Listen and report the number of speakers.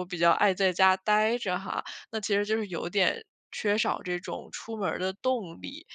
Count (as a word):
one